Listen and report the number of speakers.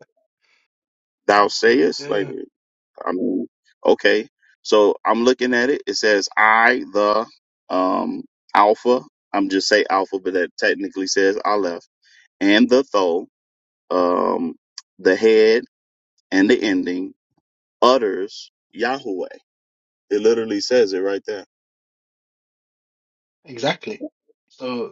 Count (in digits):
2